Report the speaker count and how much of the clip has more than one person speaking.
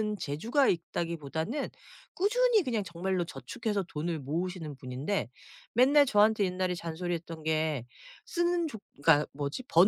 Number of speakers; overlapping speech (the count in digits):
1, no overlap